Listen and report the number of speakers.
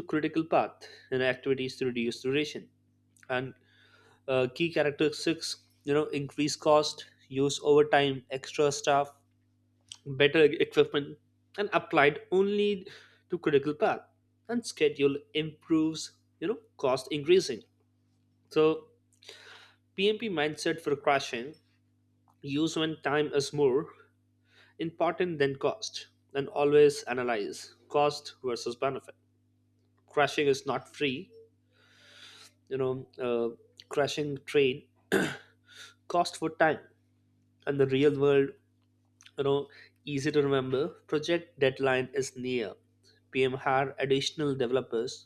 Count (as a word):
one